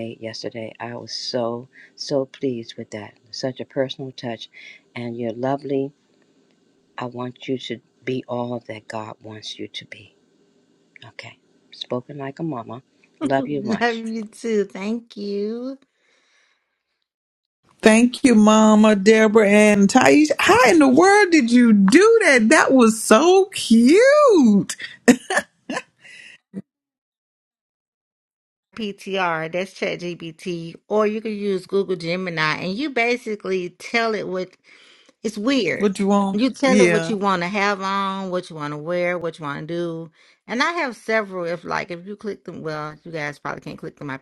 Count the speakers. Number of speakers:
three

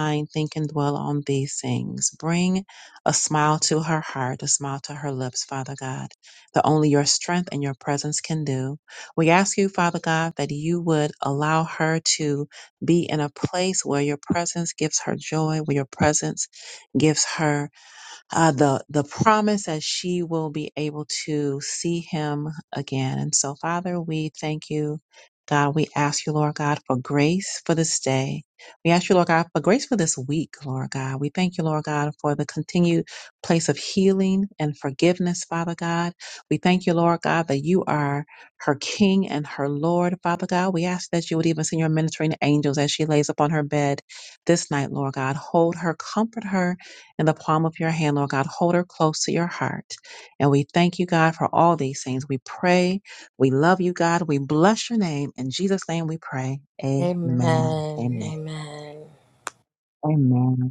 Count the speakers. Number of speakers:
two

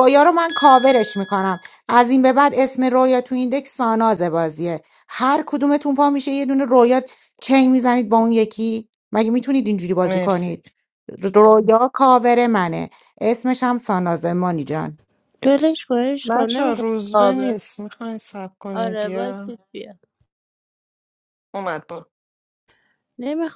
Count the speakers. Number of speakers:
three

